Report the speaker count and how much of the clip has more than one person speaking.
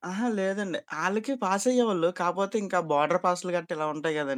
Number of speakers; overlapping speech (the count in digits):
1, no overlap